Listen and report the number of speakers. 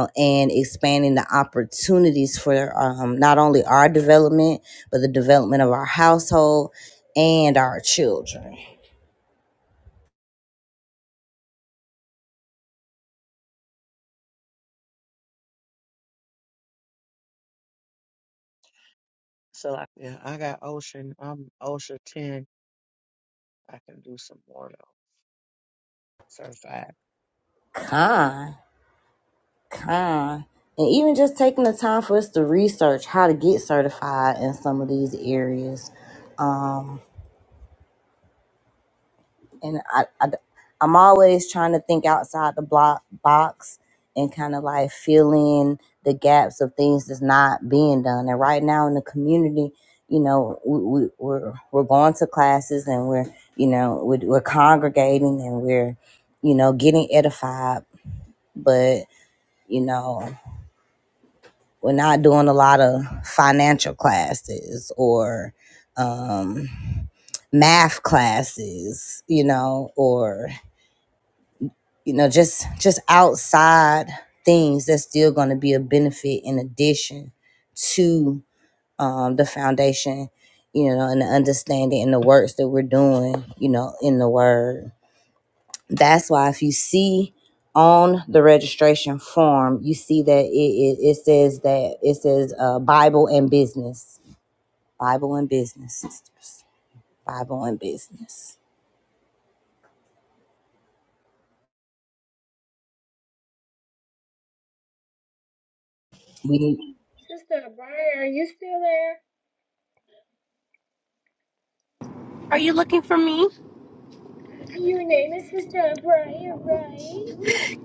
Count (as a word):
four